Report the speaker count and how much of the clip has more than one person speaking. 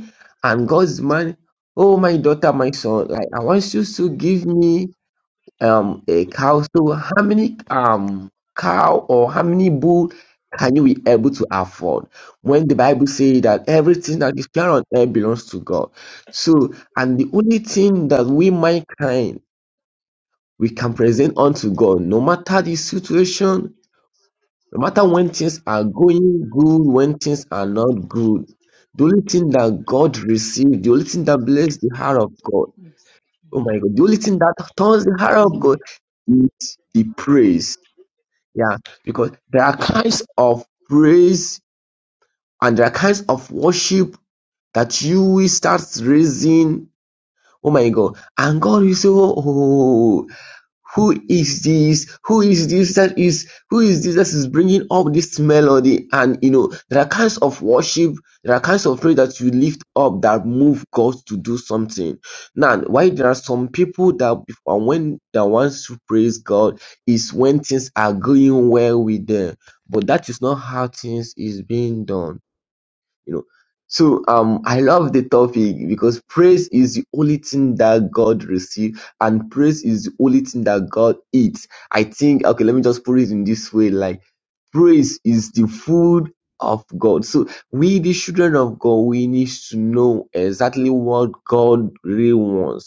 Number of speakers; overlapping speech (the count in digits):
1, no overlap